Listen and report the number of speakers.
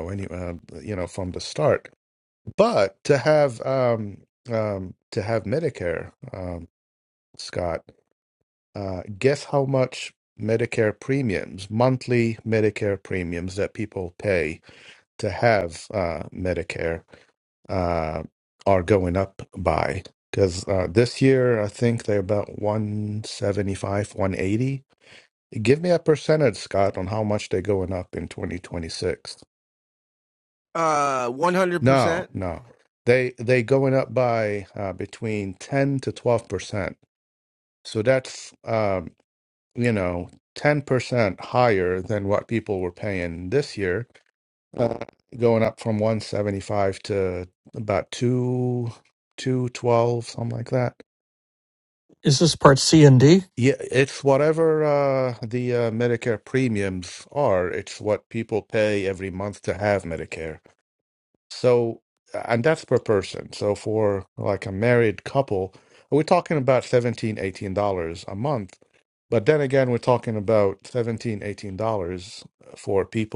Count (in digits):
3